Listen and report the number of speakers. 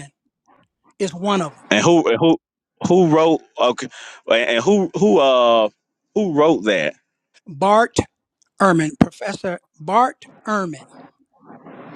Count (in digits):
2